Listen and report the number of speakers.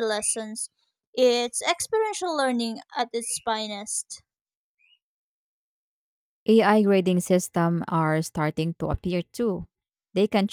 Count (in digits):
2